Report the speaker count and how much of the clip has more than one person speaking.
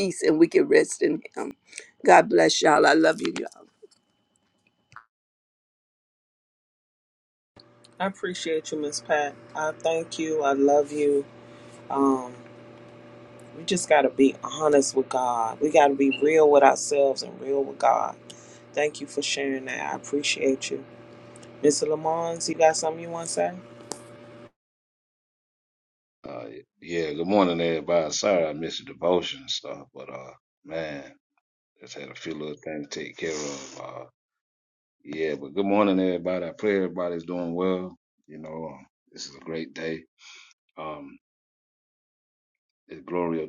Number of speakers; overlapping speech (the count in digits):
3, no overlap